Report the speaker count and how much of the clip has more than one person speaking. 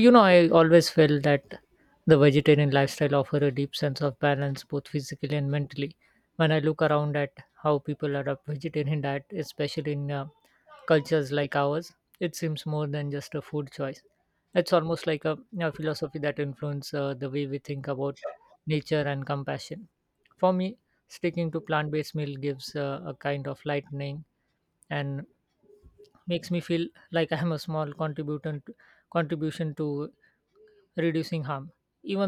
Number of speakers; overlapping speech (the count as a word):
one, no overlap